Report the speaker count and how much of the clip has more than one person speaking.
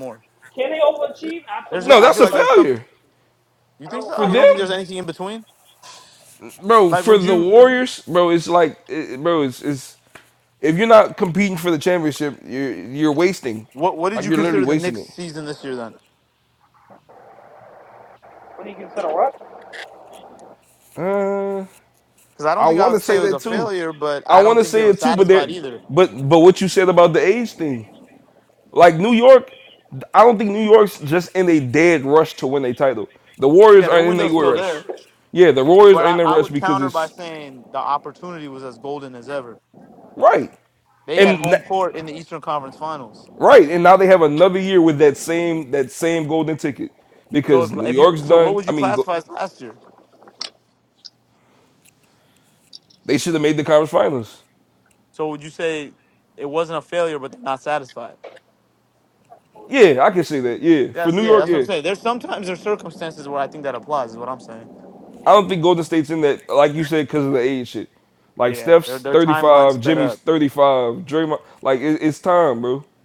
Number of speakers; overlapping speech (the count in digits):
3, about 16%